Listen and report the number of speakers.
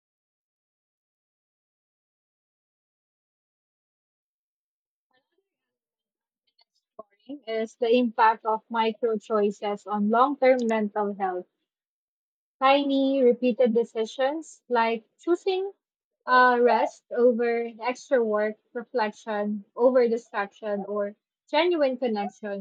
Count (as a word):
one